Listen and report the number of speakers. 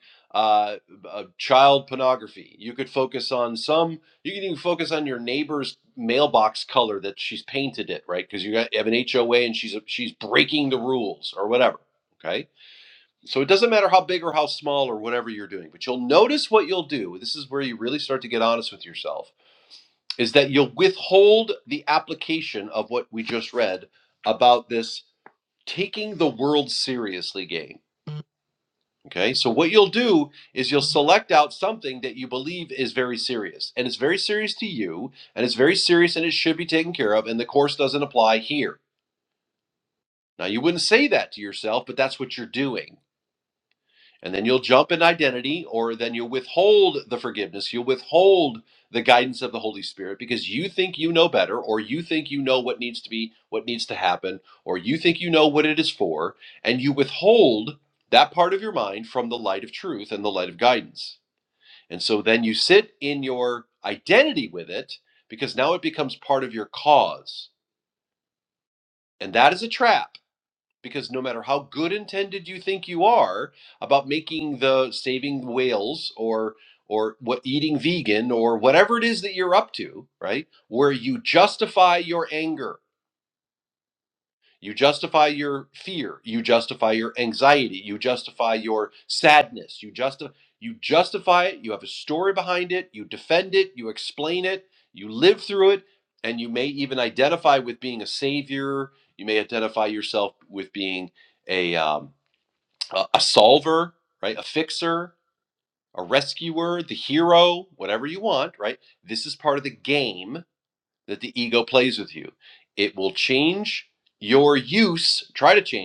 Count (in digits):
1